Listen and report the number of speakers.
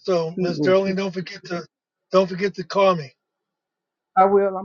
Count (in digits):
2